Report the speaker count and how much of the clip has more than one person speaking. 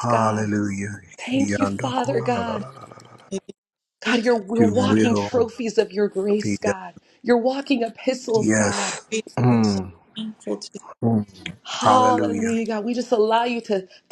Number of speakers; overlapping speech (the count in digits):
3, about 38%